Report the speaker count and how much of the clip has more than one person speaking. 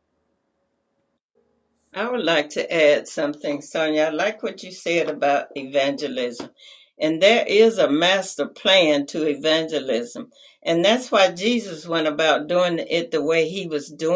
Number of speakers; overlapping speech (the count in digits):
1, no overlap